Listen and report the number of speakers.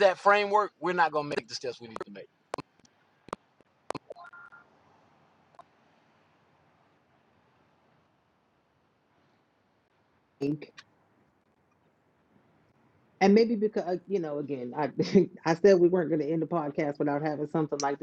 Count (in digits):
2